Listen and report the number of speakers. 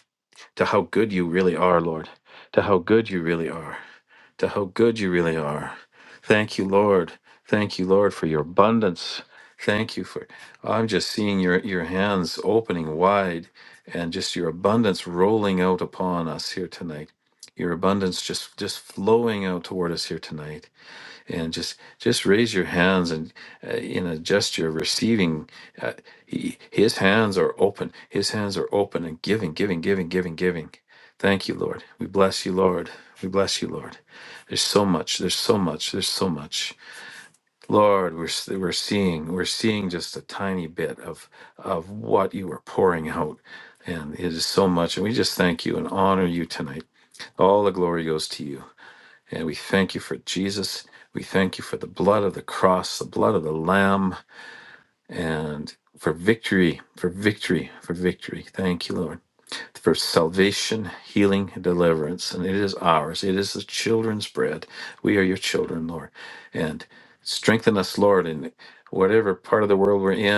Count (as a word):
one